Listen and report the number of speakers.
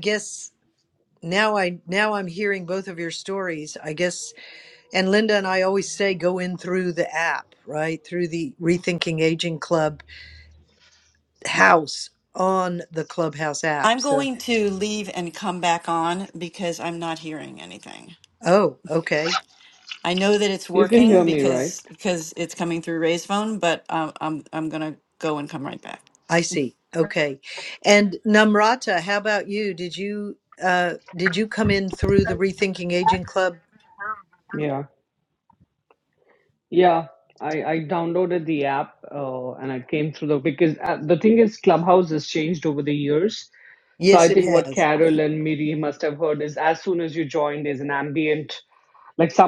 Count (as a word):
three